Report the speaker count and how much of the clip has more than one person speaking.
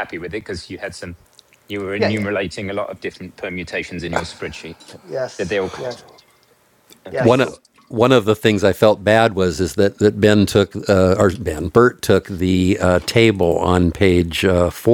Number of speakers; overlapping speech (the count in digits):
3, about 5%